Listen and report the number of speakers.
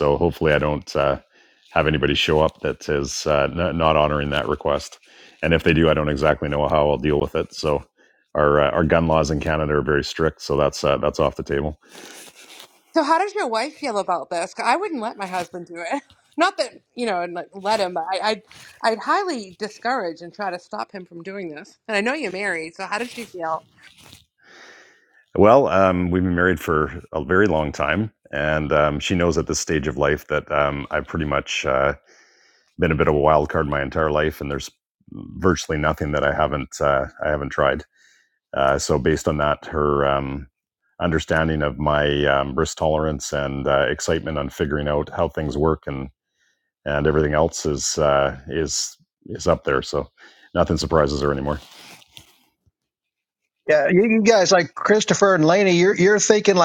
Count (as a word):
three